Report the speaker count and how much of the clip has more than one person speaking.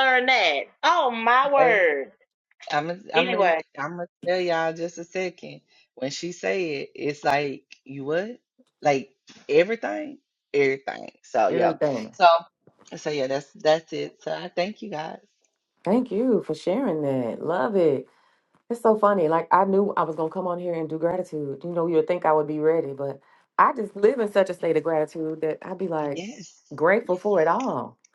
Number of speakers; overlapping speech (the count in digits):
3, about 4%